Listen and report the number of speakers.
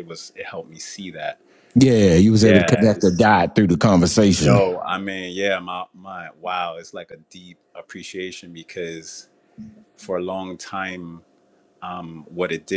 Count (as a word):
two